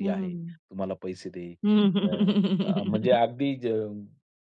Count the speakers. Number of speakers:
two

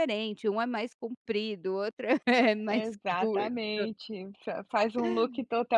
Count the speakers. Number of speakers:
two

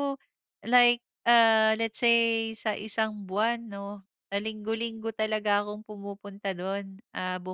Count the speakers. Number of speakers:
one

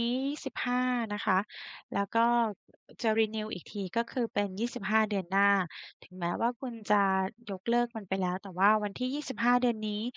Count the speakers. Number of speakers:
one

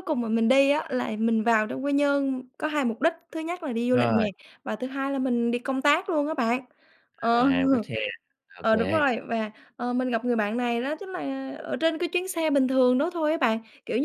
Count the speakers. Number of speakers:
two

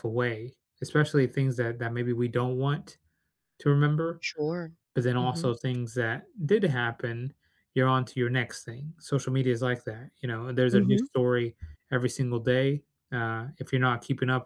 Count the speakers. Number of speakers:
two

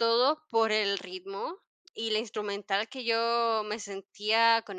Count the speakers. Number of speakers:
one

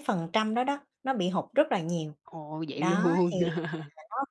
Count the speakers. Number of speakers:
two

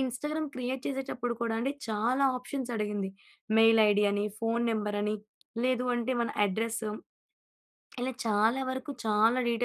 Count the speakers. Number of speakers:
one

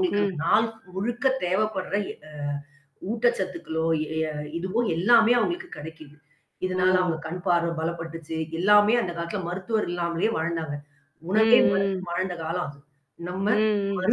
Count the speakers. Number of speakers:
two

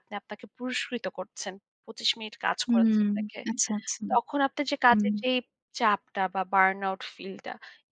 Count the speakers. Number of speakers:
two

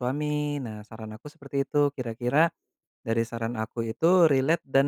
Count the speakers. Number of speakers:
one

